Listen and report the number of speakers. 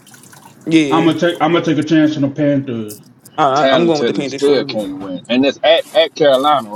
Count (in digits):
3